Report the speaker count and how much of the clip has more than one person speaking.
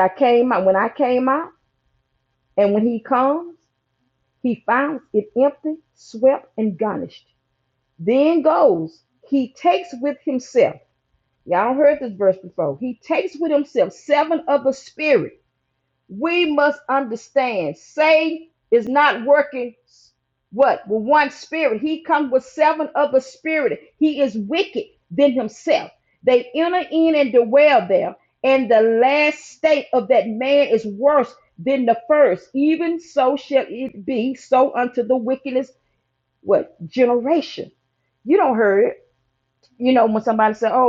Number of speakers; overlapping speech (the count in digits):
1, no overlap